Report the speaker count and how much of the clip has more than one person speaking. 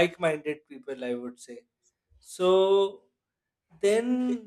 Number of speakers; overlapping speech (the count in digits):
1, no overlap